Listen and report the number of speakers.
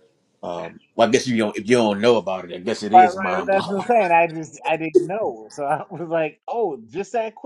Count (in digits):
2